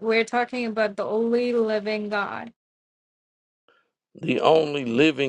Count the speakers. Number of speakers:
two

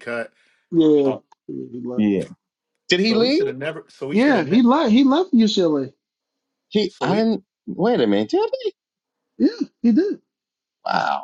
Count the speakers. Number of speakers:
three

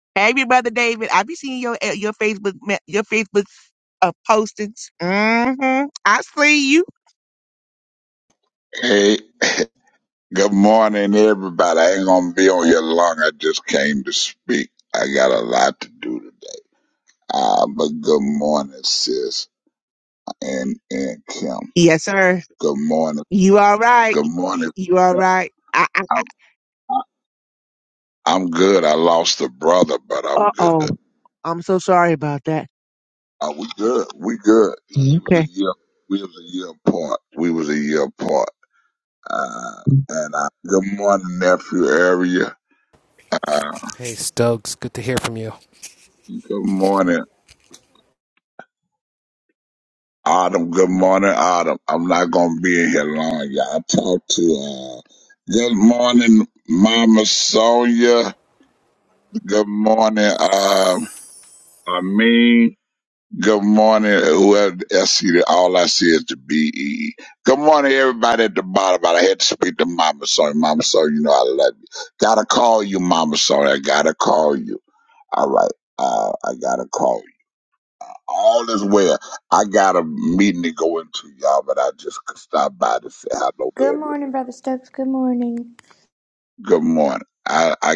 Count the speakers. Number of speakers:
four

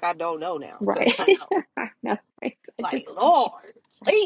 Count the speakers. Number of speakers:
two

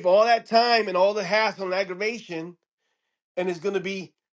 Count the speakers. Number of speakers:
one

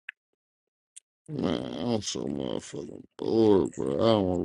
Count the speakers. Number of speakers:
one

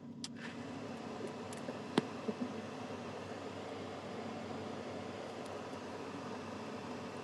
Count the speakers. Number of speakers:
zero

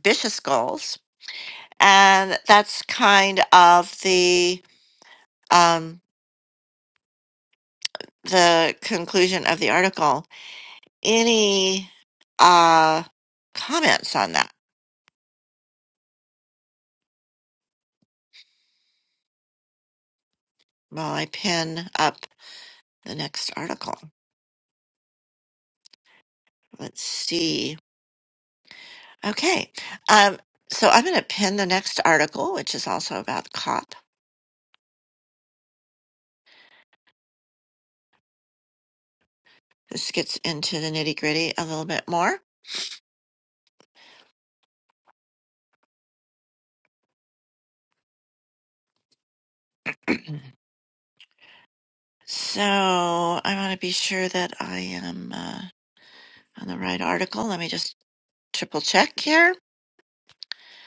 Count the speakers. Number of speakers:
one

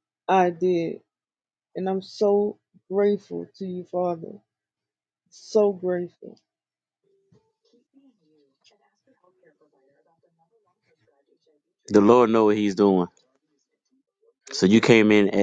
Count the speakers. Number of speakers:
two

